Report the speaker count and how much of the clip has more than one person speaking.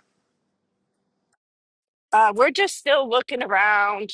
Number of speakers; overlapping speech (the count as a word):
one, no overlap